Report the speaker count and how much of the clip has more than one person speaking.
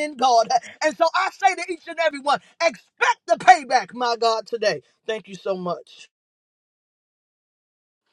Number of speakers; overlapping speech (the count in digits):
1, no overlap